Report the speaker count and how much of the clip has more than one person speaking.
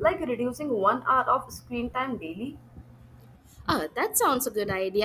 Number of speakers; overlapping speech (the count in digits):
2, no overlap